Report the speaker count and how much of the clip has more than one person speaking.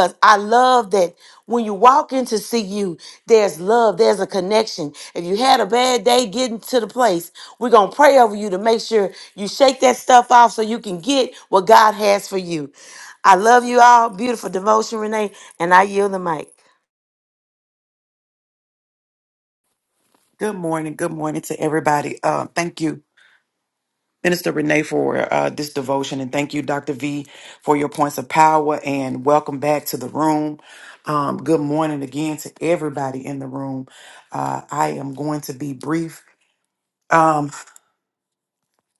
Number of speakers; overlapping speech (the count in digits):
2, no overlap